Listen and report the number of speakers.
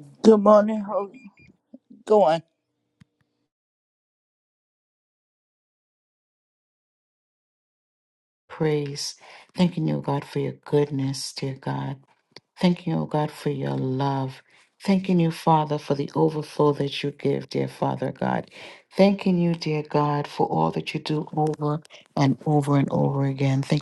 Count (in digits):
2